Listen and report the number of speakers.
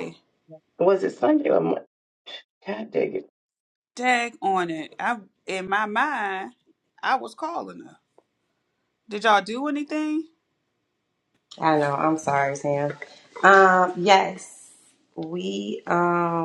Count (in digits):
3